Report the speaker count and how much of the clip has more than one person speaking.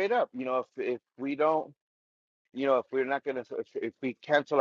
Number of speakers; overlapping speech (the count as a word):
one, no overlap